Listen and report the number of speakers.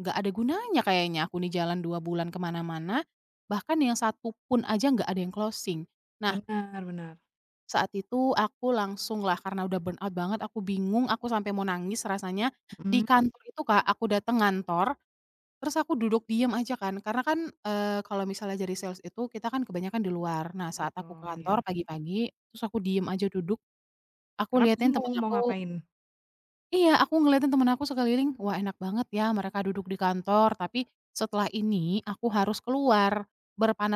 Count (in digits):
2